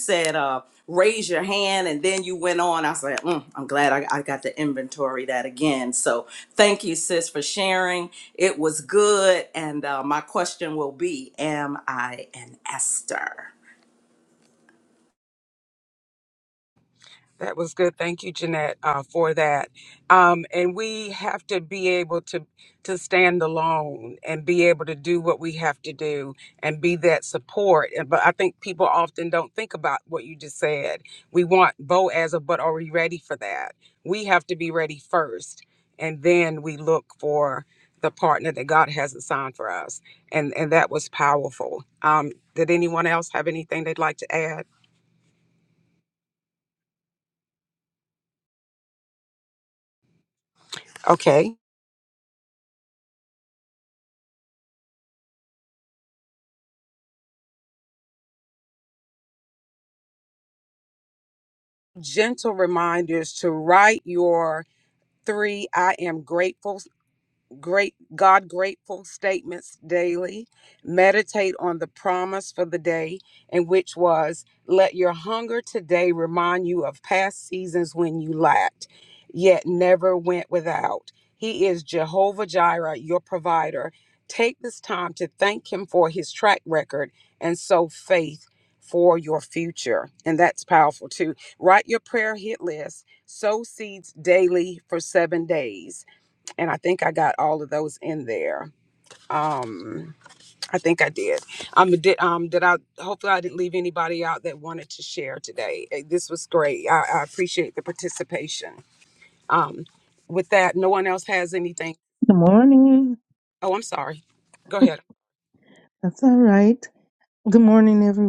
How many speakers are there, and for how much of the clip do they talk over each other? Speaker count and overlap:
three, no overlap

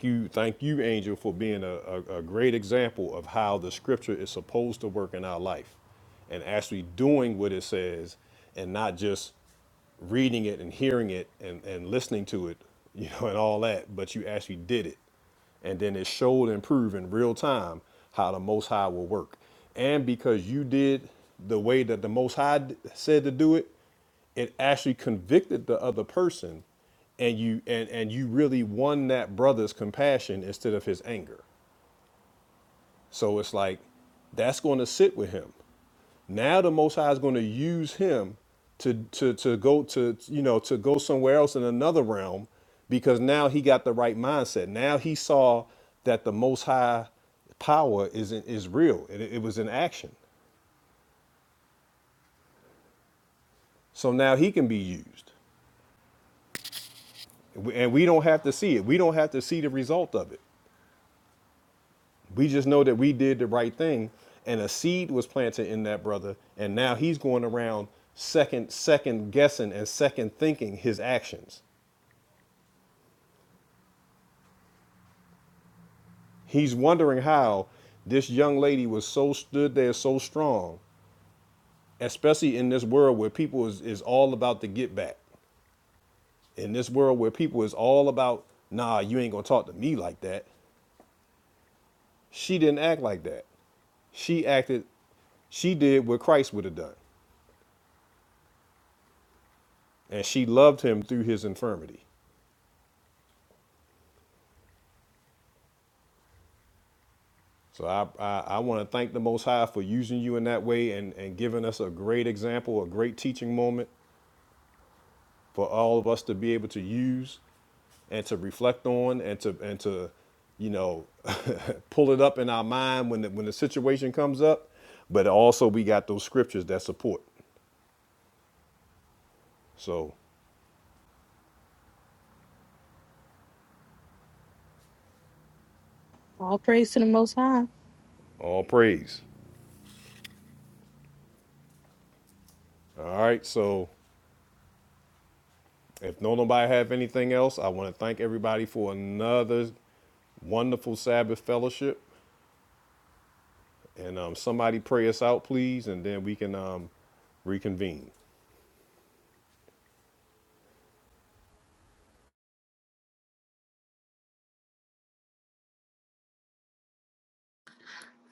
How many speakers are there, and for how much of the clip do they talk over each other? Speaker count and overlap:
two, no overlap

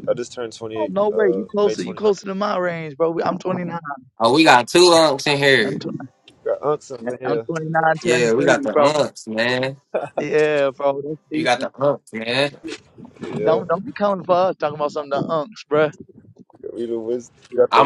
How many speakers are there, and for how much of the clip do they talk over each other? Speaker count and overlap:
three, about 18%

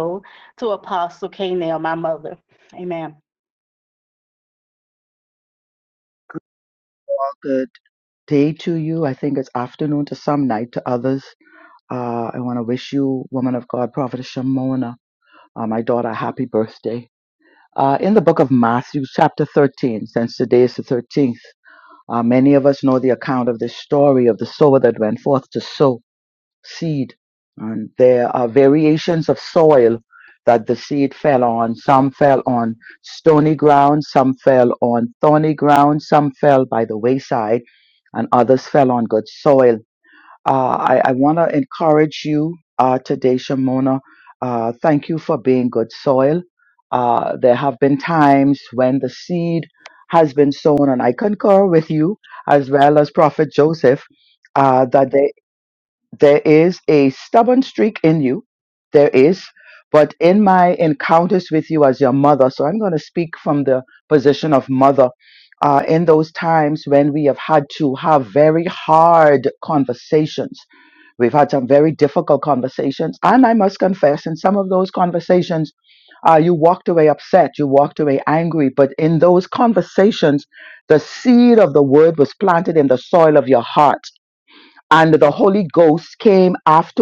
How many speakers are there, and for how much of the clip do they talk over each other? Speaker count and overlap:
two, no overlap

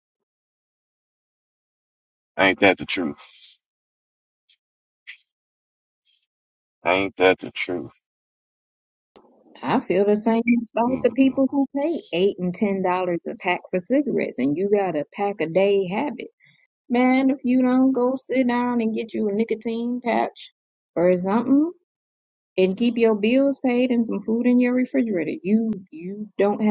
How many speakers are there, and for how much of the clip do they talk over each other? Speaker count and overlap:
two, about 1%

